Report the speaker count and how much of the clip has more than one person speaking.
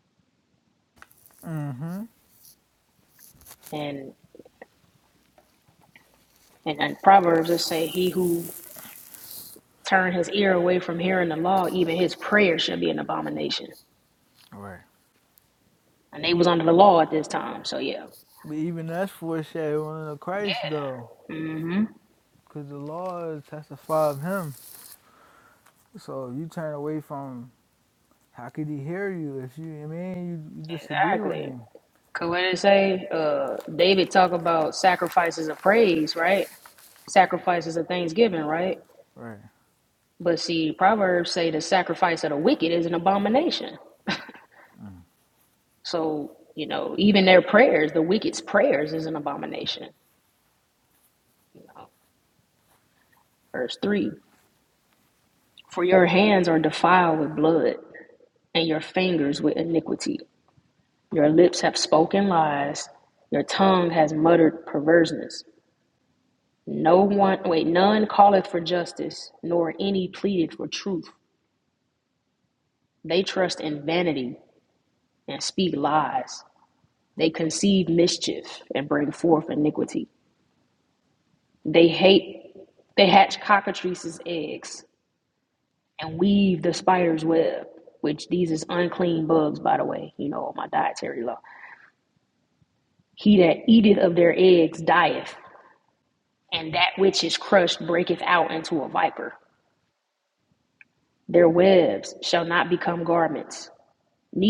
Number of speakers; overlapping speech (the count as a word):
two, about 1%